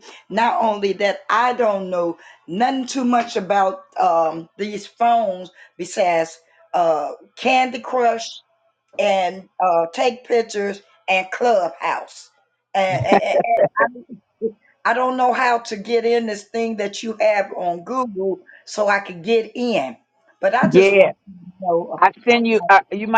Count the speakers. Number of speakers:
2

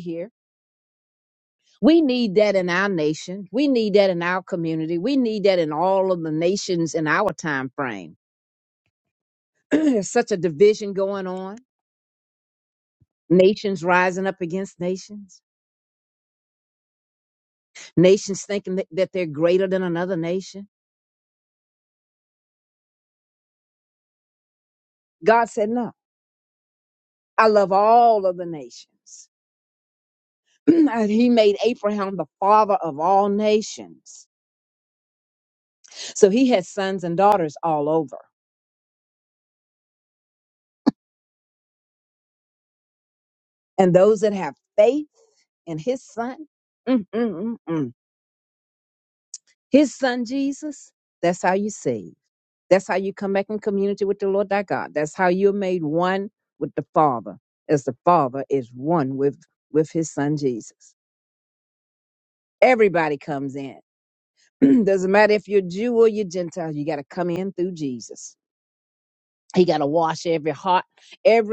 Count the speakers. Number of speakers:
1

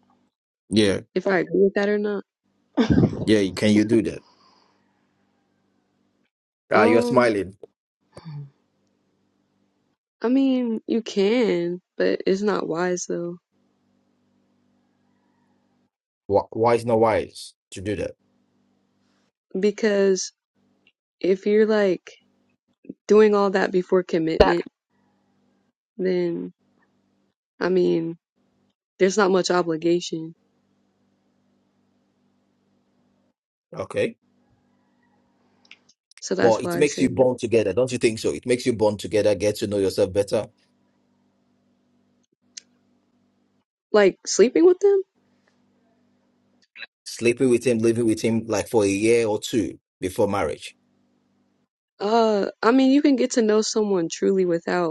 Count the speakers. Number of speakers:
2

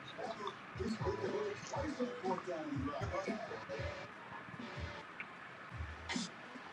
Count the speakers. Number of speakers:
0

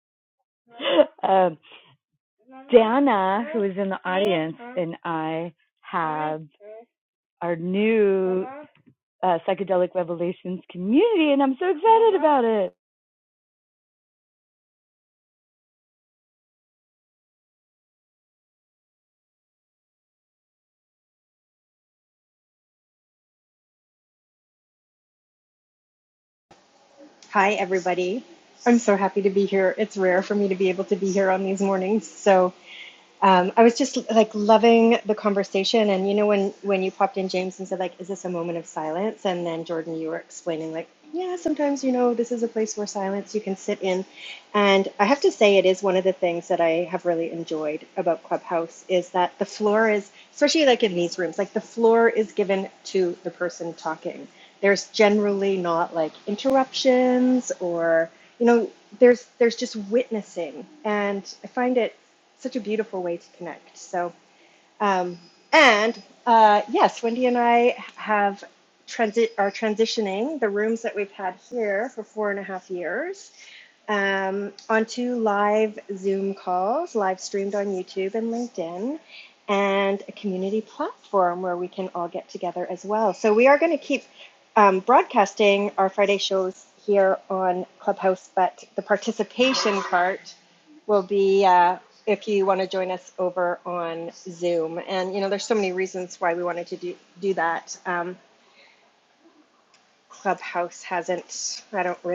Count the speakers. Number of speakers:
2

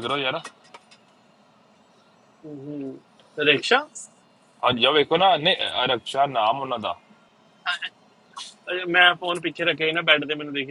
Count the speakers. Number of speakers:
2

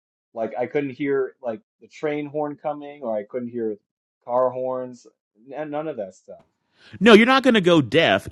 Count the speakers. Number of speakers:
2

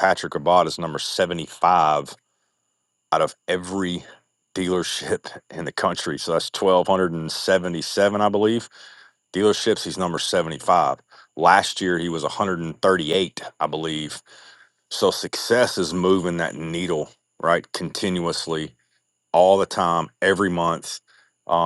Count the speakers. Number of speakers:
1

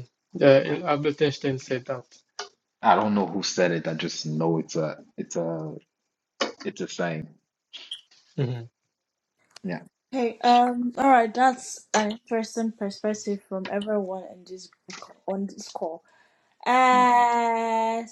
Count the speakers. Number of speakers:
3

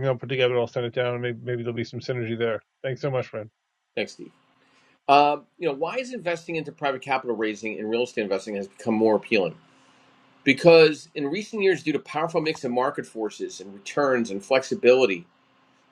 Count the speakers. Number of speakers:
2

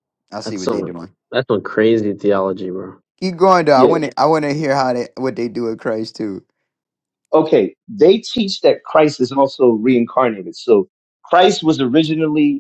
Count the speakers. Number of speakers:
3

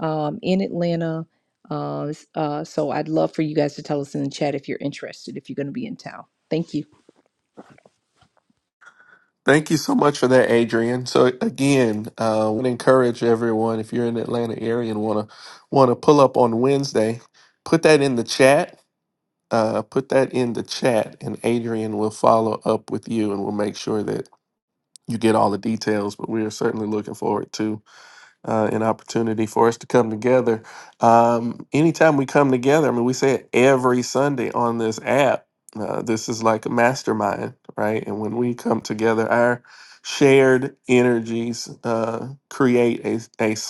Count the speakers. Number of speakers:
2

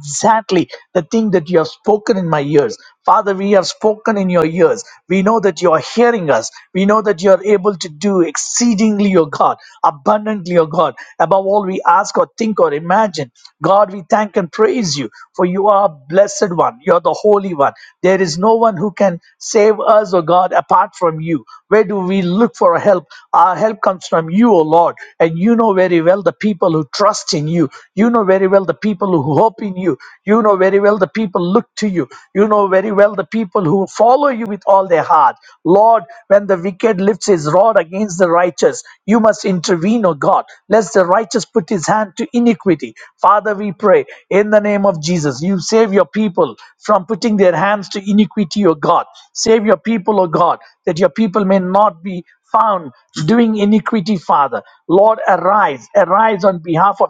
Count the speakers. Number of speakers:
1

